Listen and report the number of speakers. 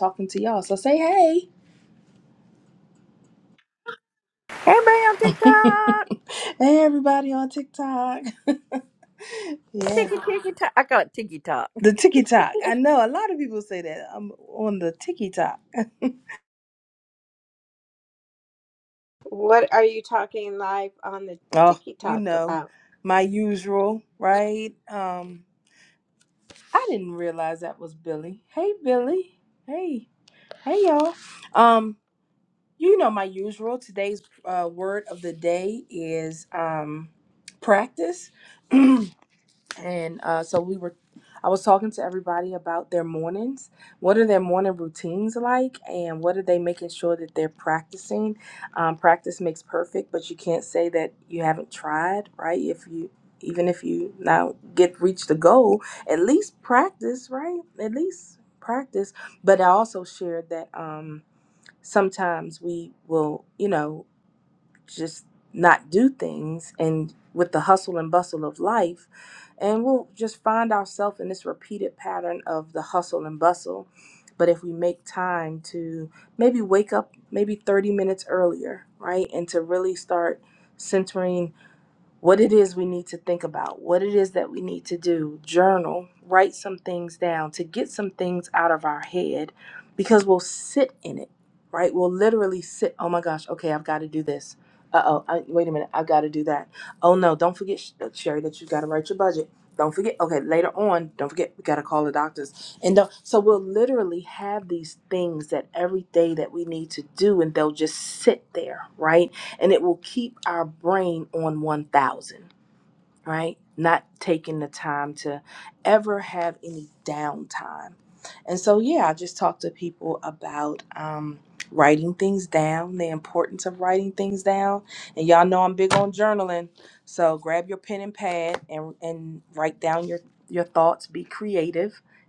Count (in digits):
3